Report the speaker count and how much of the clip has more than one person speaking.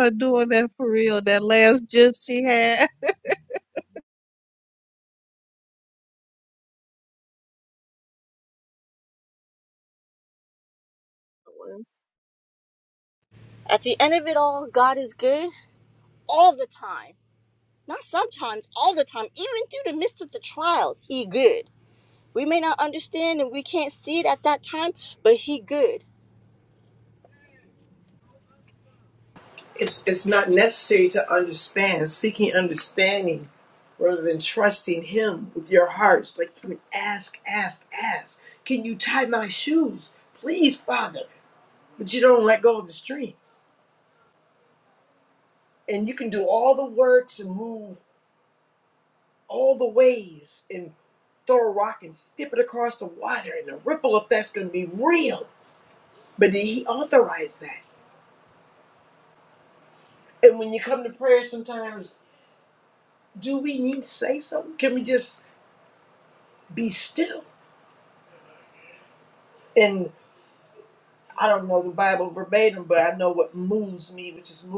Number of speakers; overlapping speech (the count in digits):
3, no overlap